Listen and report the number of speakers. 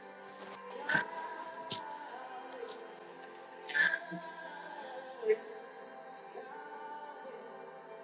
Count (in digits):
0